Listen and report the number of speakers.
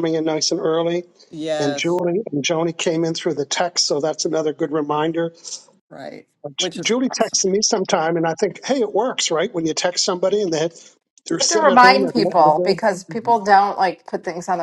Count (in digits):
3